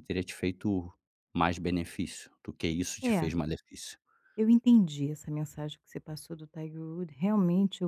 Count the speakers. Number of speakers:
2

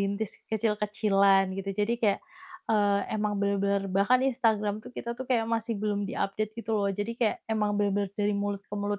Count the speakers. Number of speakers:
1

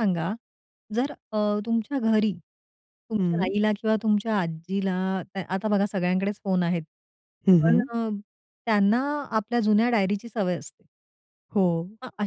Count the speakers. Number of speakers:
2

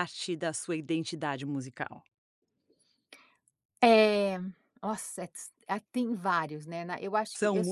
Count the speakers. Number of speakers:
2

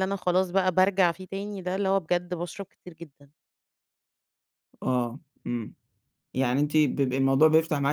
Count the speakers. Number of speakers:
2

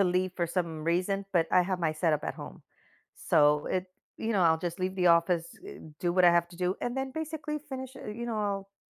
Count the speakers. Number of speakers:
1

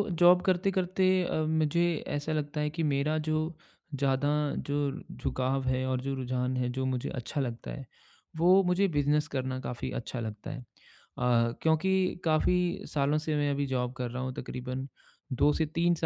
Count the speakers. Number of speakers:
1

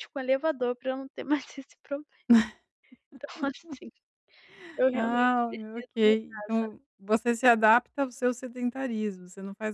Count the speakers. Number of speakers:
2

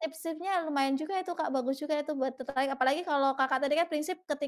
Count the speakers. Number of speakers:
1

